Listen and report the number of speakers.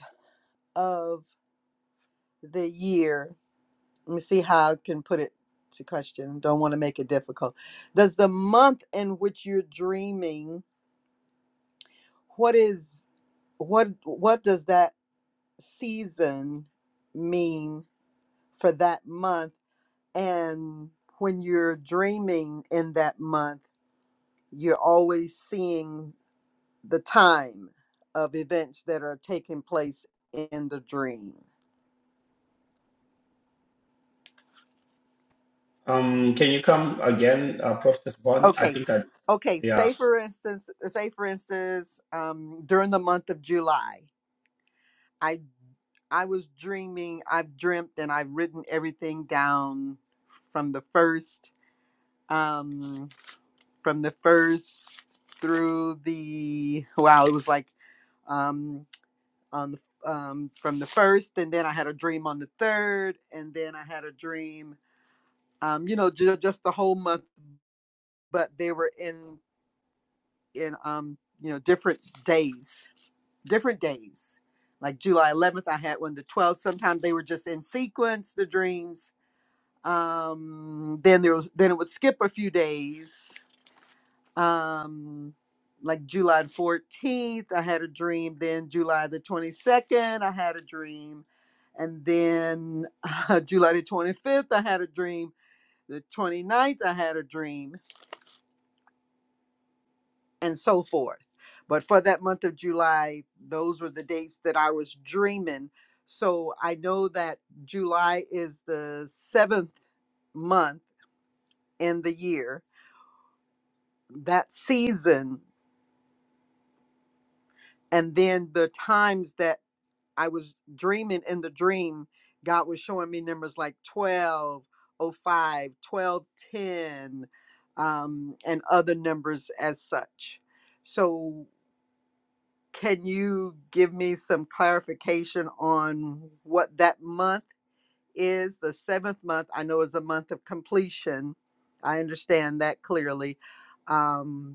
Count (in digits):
2